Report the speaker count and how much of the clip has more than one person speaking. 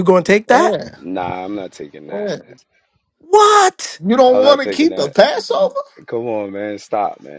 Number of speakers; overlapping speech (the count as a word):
three, about 18%